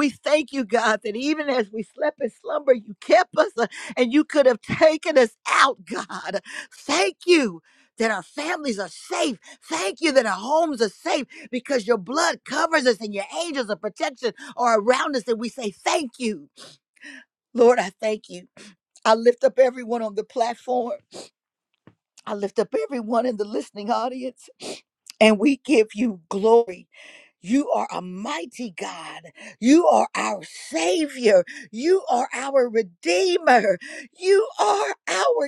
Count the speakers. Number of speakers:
1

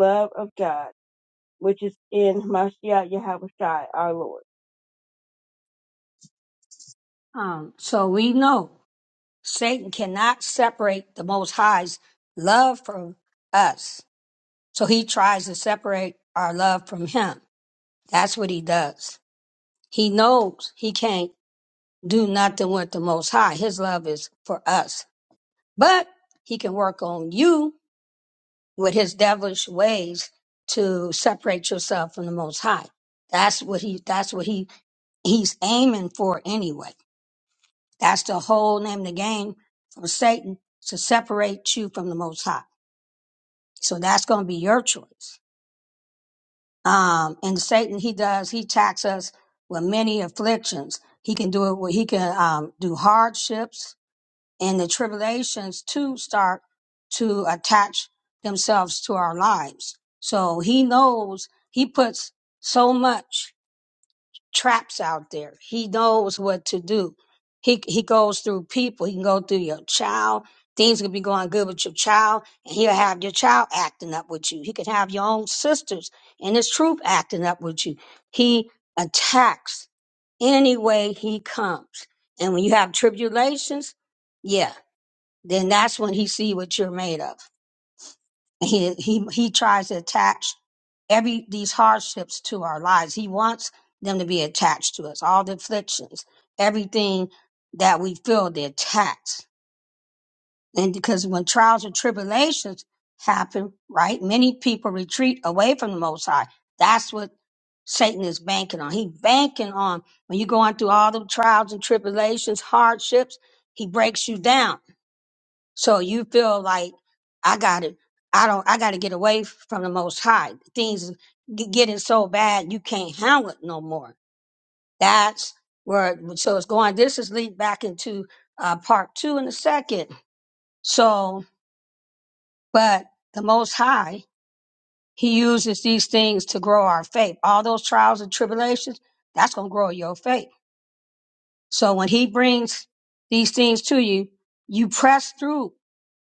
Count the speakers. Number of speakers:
2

